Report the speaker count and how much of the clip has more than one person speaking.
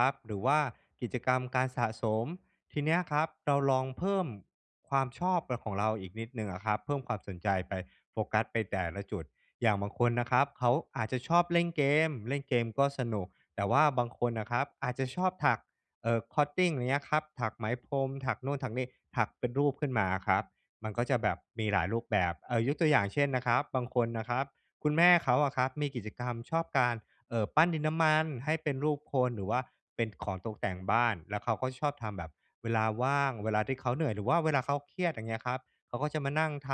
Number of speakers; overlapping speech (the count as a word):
one, no overlap